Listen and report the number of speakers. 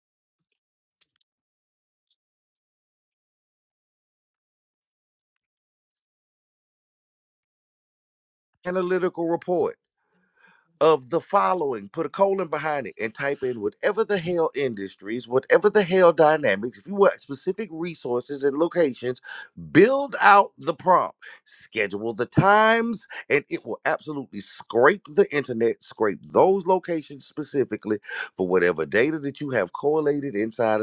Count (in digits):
1